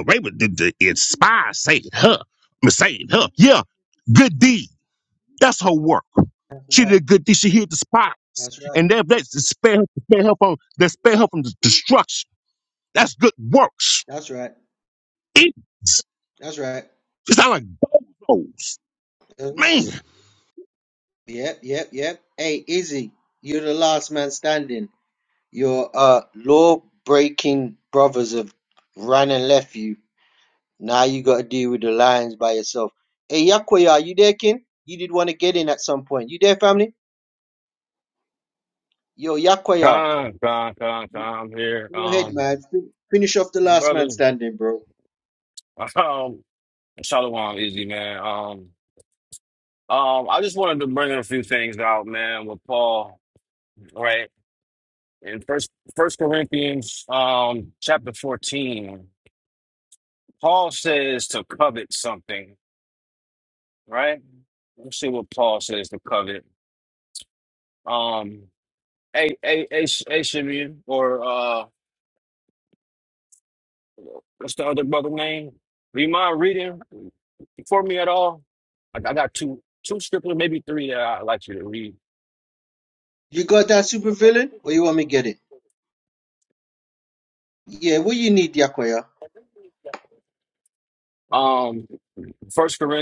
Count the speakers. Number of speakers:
3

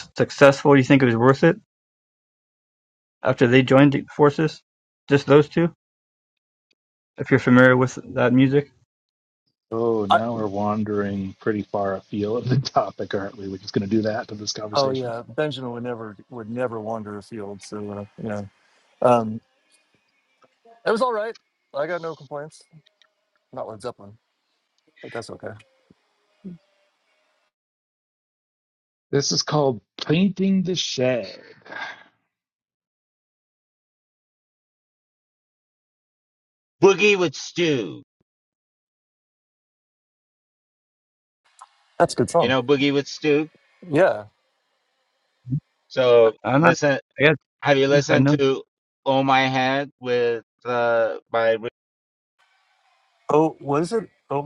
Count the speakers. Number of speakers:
4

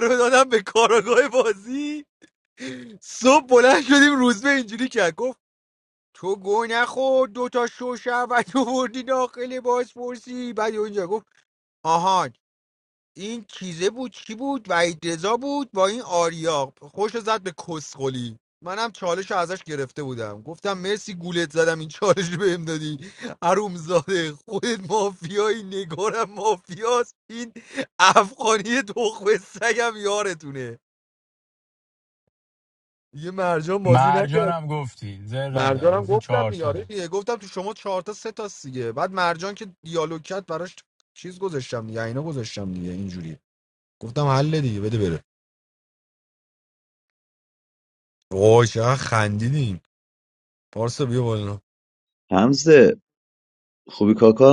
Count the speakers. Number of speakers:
3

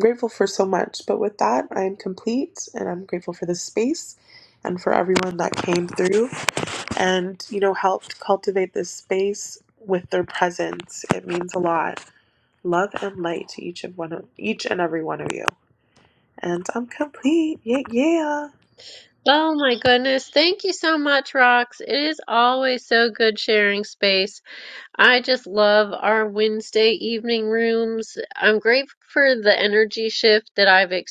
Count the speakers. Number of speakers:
2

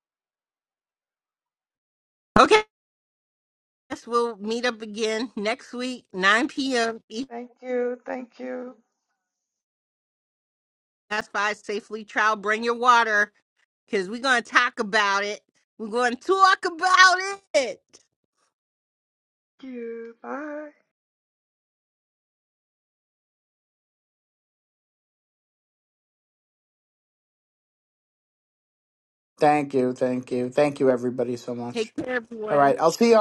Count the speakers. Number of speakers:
3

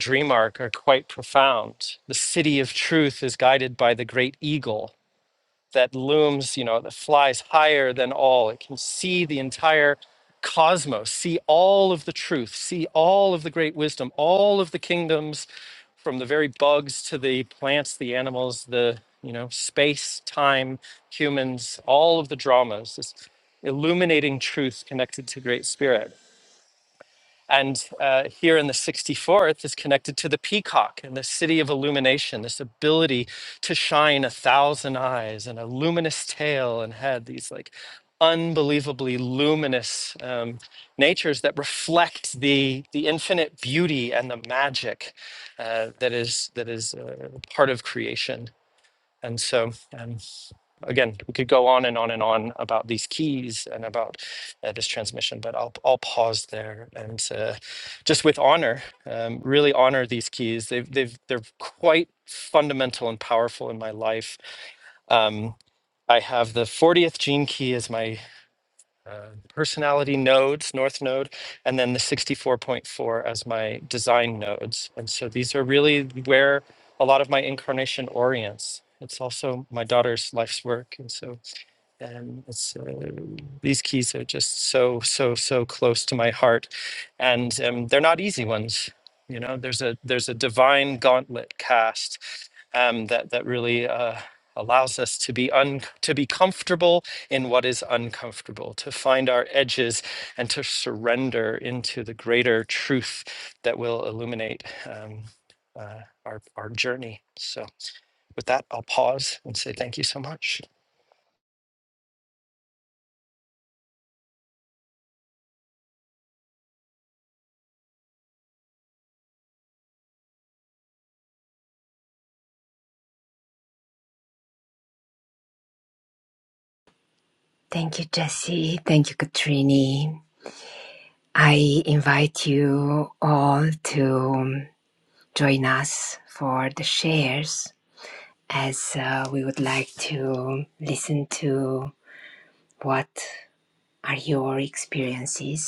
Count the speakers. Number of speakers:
2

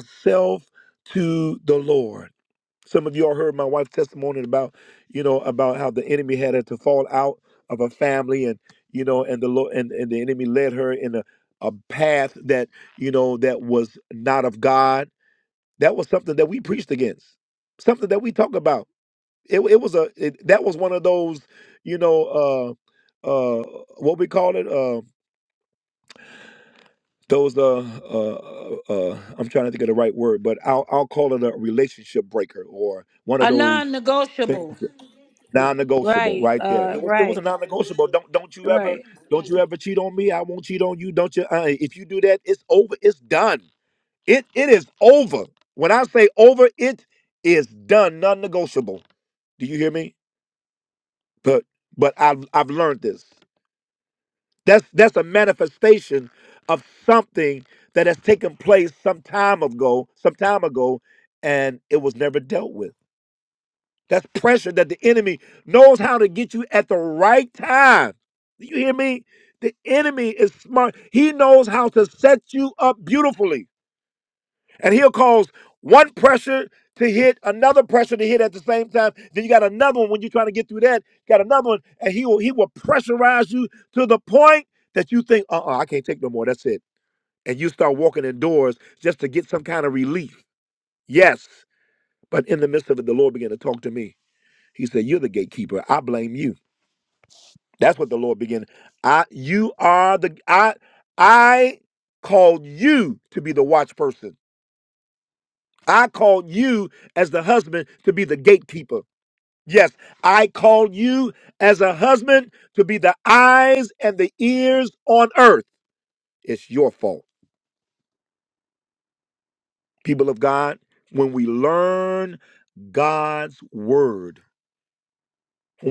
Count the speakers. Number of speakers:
2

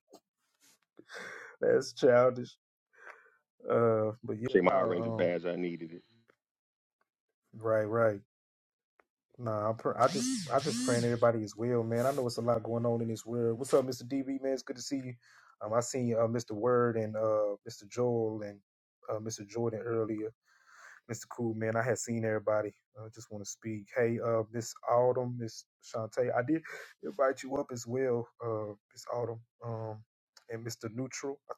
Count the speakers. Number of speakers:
2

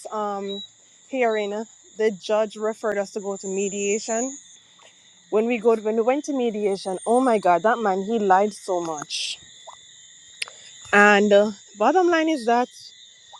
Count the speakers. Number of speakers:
1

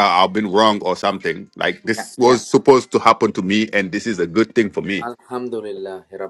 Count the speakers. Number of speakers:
2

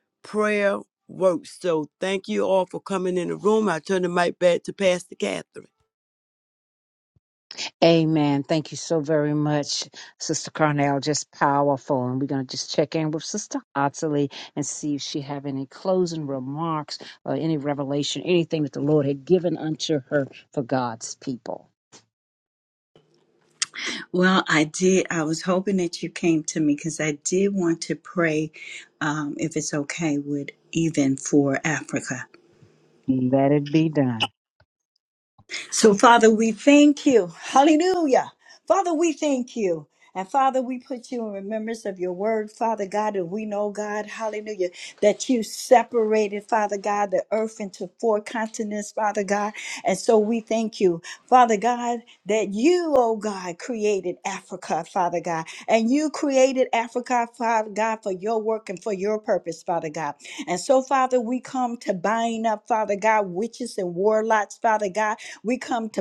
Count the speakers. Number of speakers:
3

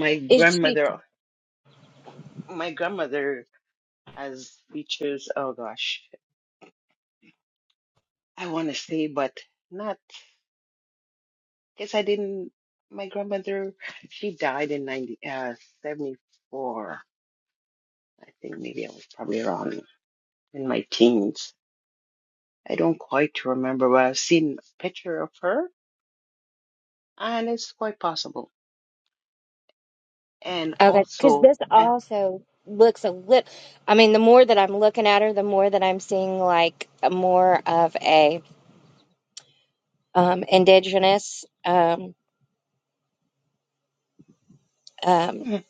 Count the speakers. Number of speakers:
2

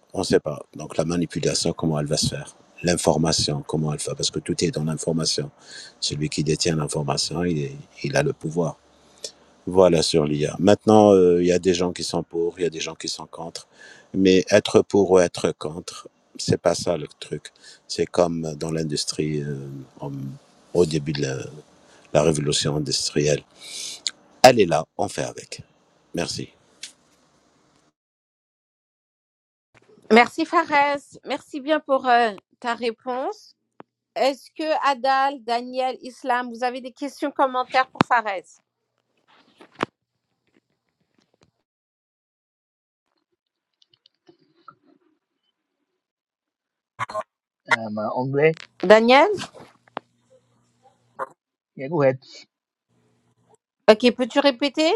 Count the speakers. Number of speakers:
3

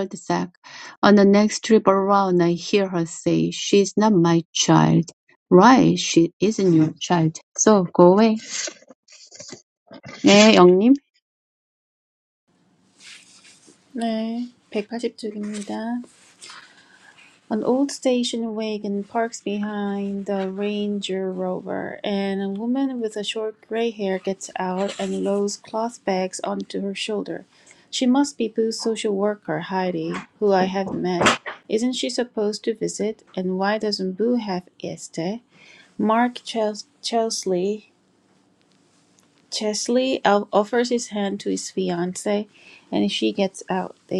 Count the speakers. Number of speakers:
2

